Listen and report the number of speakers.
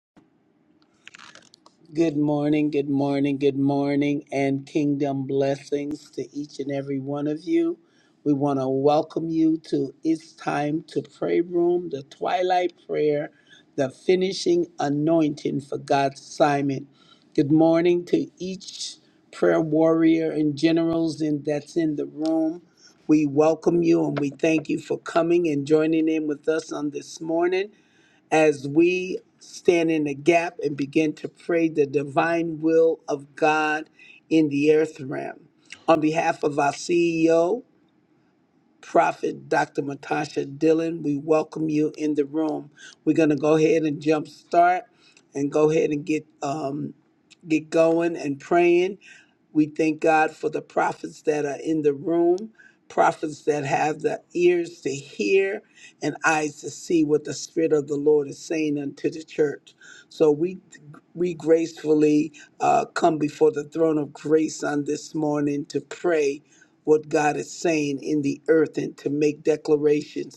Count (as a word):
one